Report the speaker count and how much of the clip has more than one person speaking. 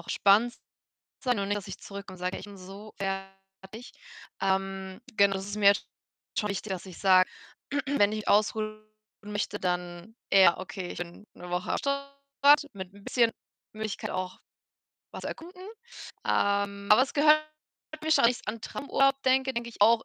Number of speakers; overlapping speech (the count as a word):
one, no overlap